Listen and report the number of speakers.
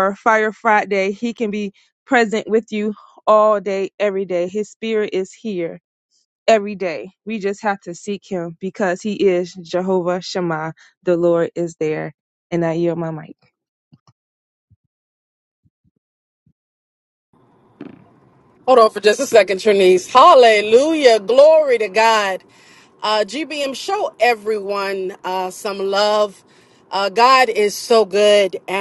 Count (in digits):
2